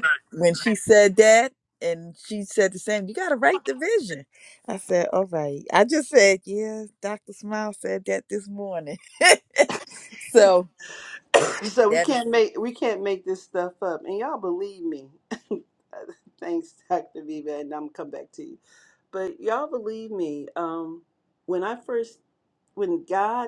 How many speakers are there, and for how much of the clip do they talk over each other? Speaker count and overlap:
2, about 1%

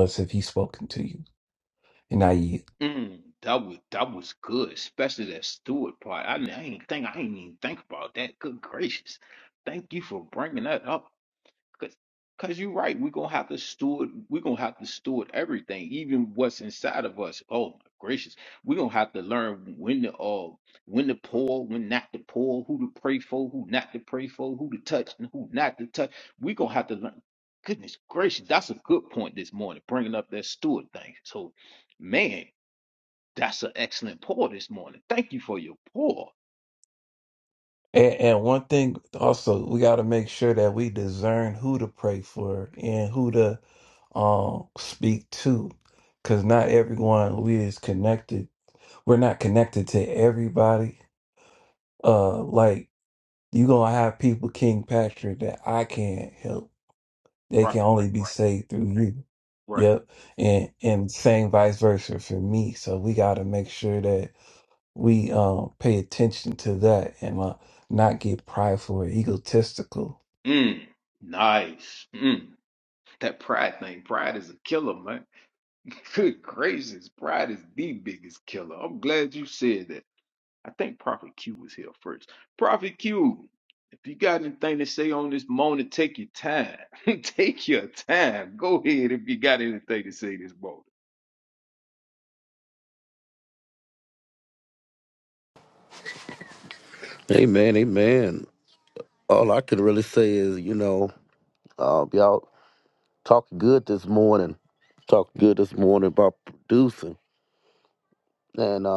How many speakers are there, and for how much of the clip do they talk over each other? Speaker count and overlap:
3, about 1%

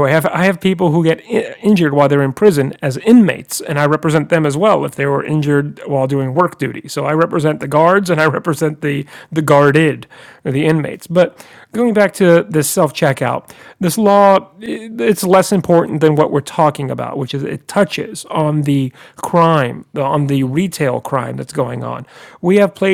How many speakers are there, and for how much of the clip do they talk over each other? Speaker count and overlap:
1, no overlap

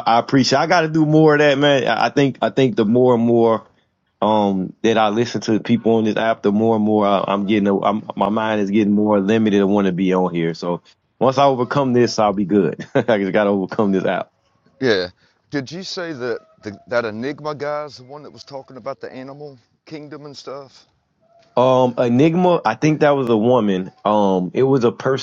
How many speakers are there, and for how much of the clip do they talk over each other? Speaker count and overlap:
2, no overlap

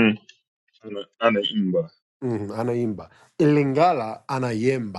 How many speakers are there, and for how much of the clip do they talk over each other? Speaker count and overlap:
2, no overlap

